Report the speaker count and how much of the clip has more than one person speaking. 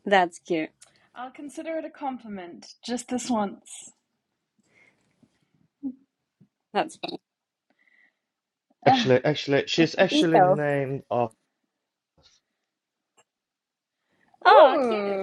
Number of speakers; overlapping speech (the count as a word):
three, about 10%